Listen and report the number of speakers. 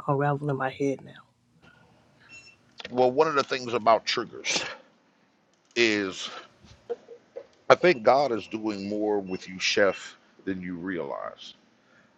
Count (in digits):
2